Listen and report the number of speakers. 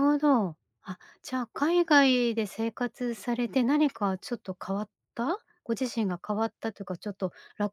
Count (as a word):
one